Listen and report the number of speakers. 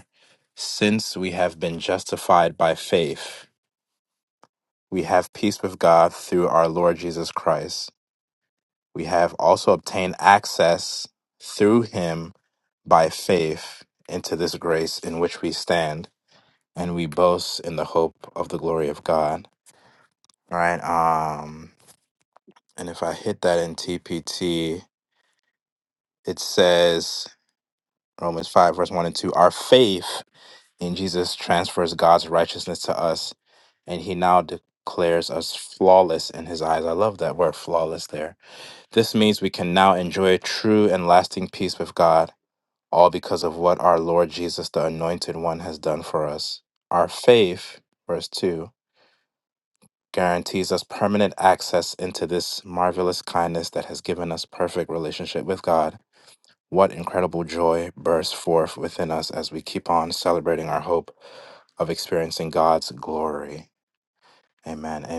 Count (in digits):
1